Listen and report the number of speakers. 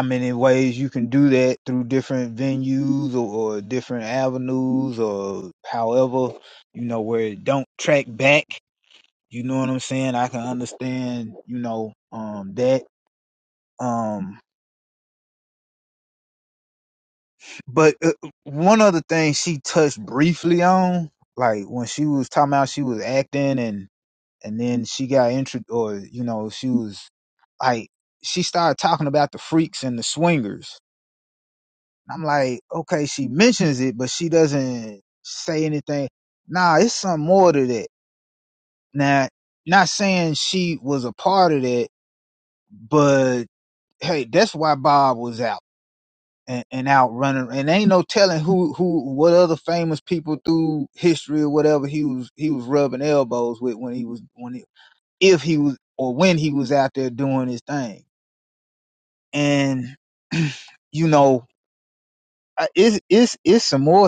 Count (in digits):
1